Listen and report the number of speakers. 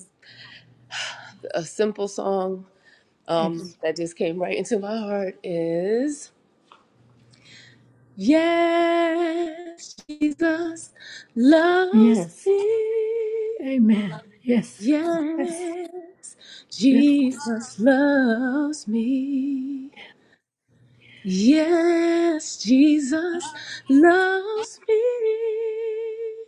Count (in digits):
2